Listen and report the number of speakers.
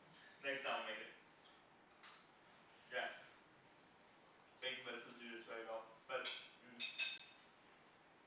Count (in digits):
1